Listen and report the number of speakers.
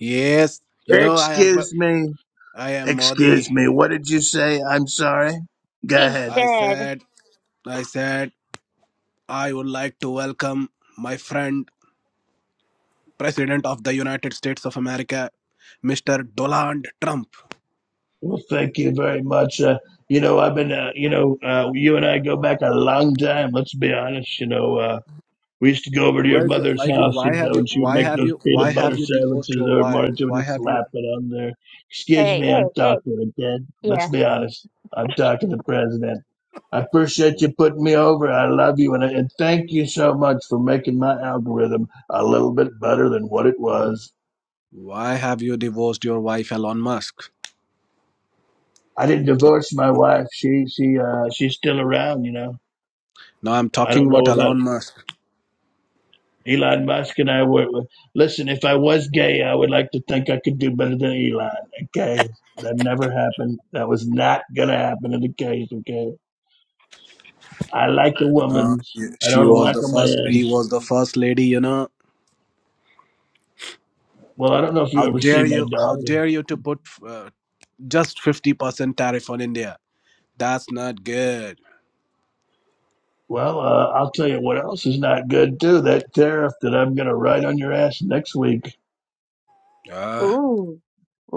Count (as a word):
three